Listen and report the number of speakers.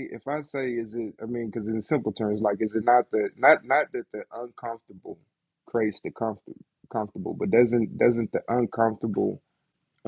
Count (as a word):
one